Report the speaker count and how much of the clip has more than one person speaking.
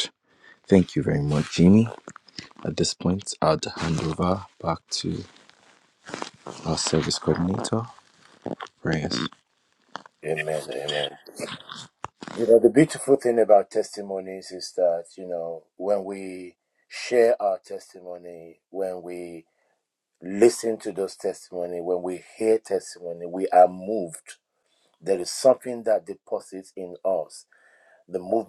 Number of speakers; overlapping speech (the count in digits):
2, no overlap